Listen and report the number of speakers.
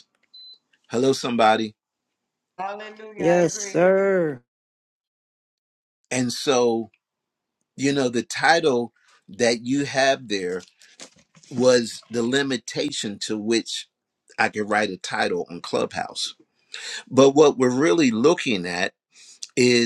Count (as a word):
three